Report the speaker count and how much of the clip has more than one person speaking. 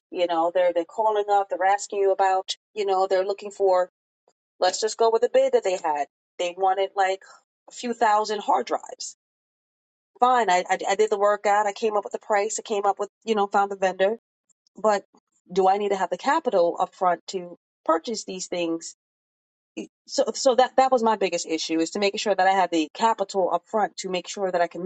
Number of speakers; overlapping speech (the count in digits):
1, no overlap